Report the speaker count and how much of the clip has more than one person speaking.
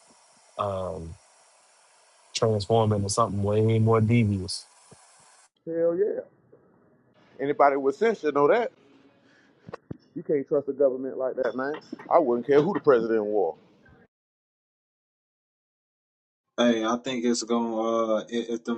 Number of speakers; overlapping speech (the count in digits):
3, no overlap